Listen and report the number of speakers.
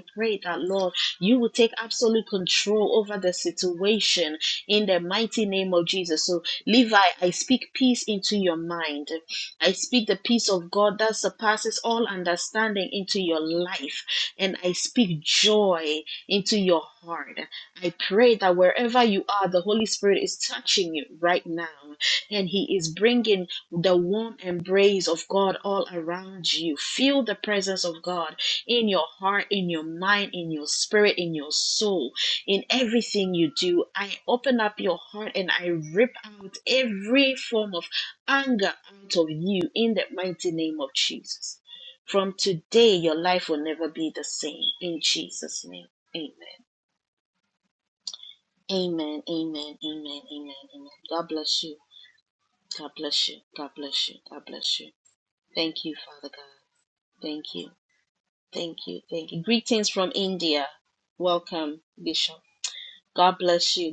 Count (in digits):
1